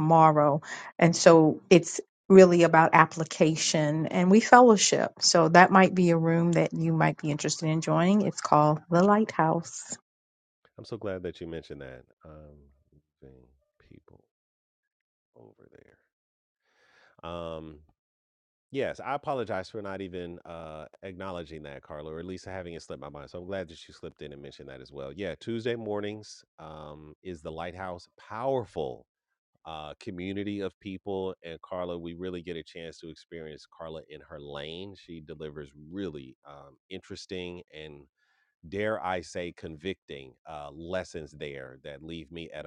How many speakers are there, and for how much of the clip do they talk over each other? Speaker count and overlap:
2, no overlap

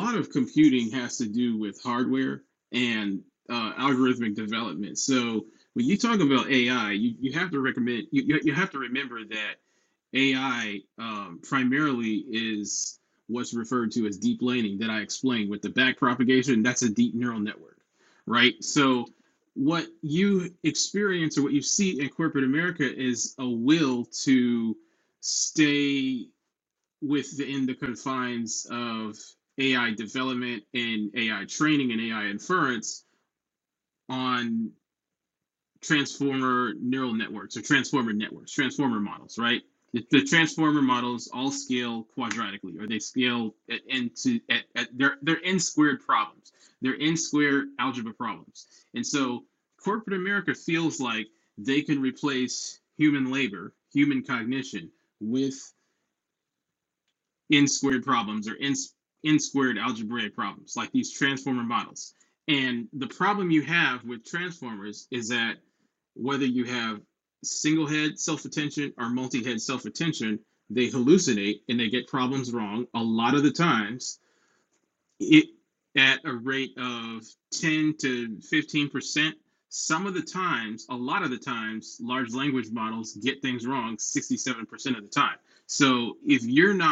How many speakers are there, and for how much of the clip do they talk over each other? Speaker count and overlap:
1, no overlap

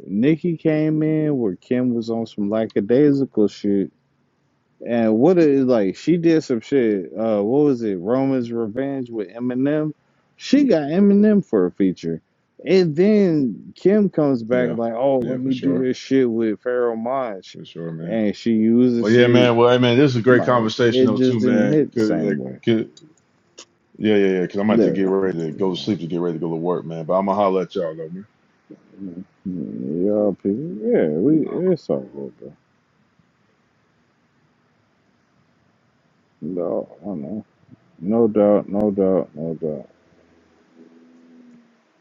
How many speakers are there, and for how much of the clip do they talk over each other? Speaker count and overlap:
2, about 10%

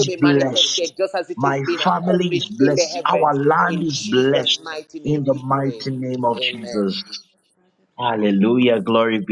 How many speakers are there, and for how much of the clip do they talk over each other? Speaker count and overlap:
2, about 54%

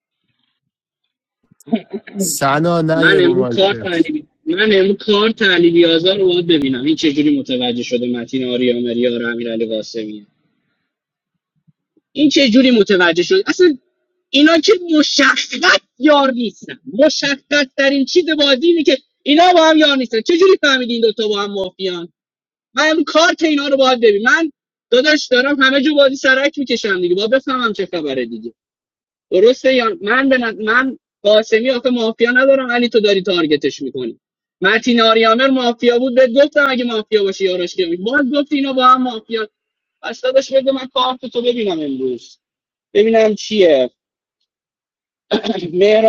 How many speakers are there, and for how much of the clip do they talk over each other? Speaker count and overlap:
2, about 2%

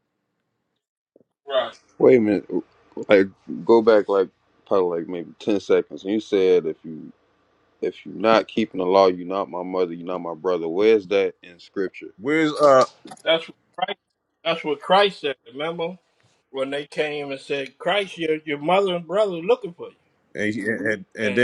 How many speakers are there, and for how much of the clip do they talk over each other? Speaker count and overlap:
3, about 1%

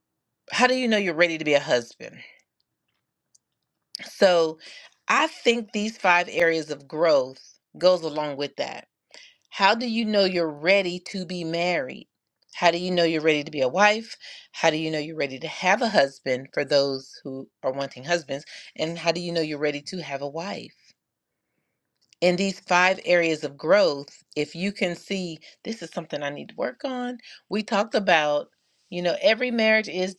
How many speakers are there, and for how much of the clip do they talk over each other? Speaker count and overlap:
1, no overlap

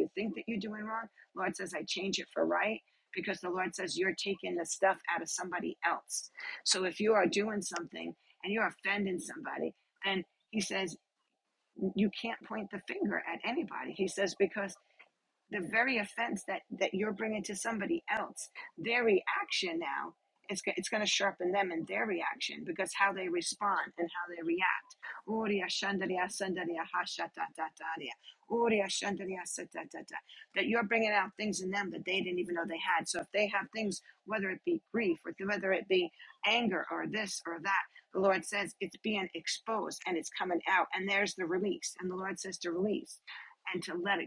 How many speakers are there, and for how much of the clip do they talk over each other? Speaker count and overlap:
1, no overlap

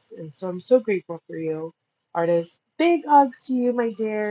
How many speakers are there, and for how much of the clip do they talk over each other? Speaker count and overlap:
1, no overlap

